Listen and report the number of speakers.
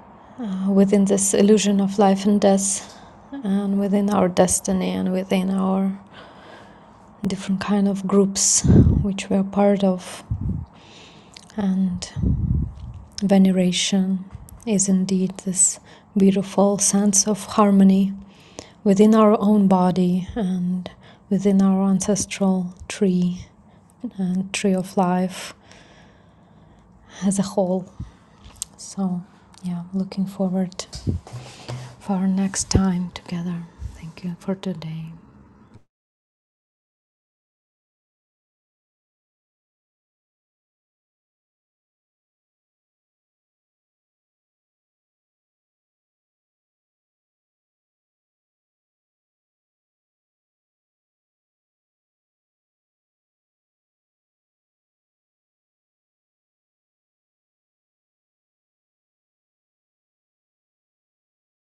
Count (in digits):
1